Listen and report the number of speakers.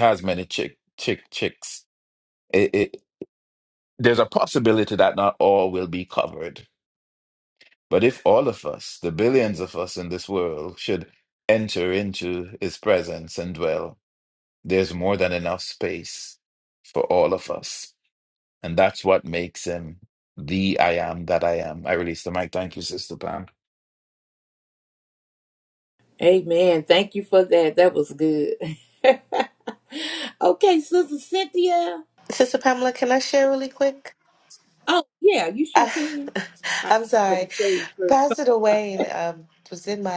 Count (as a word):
three